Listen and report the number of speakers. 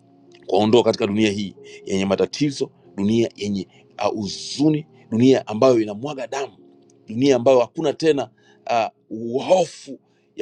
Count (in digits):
1